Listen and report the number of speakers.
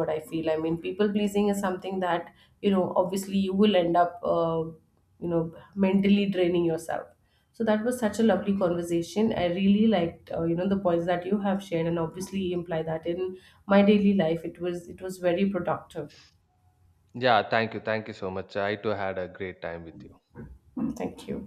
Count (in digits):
2